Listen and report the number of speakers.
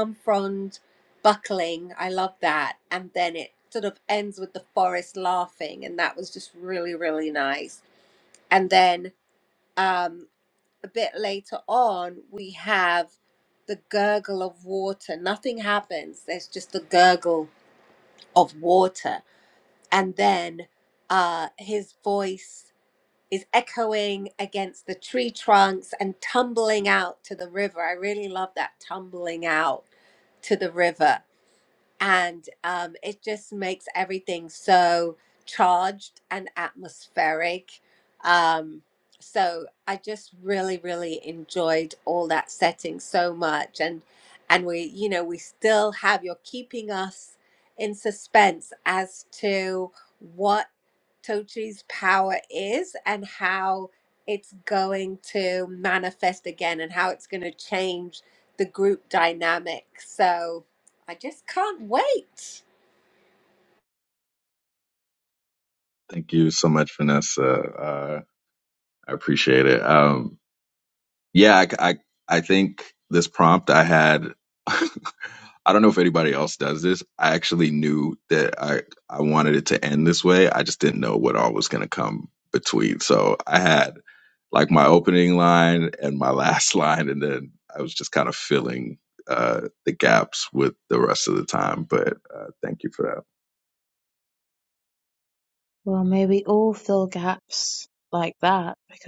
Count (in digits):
3